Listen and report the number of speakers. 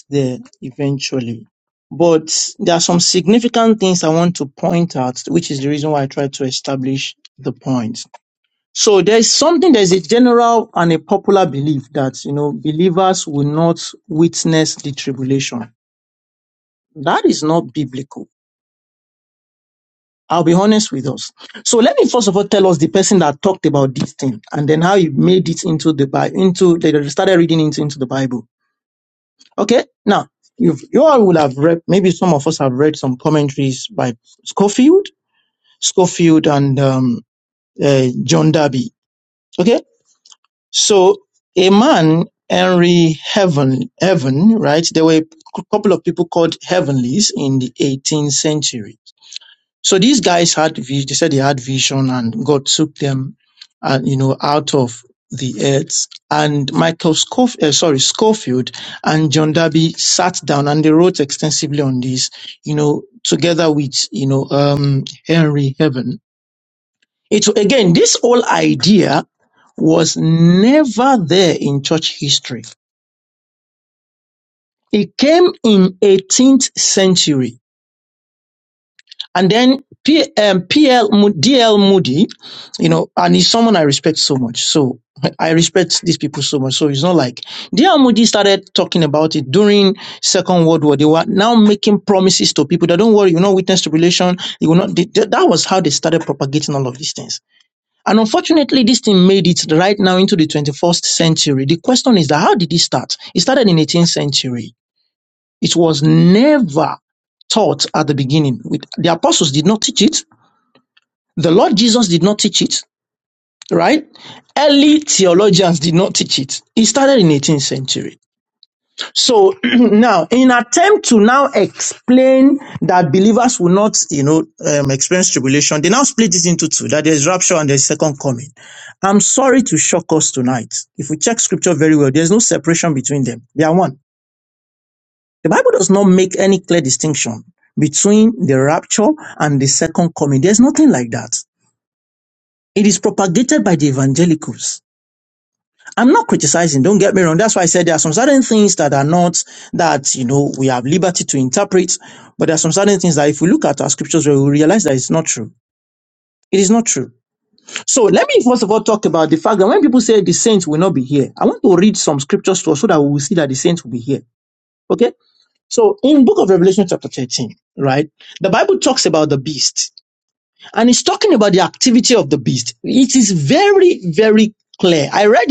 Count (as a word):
one